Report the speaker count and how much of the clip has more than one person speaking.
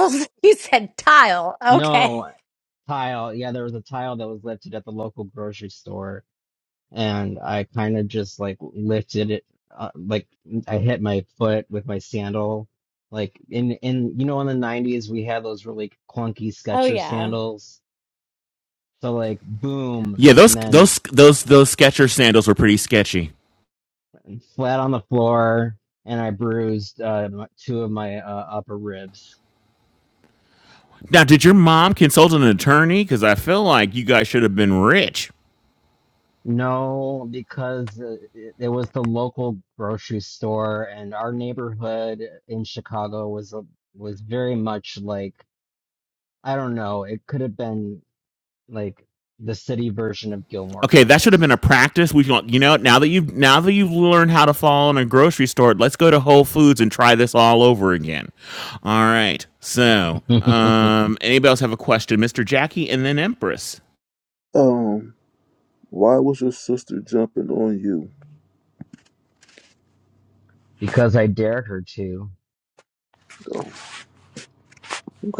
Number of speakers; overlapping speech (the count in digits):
4, about 3%